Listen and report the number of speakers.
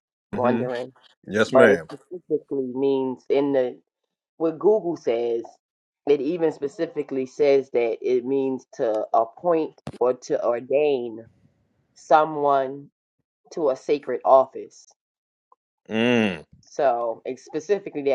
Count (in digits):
2